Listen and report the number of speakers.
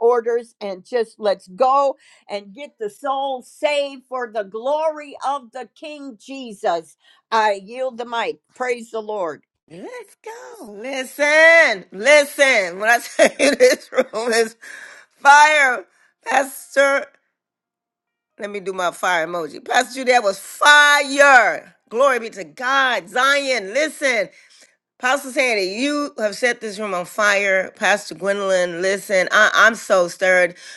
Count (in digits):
2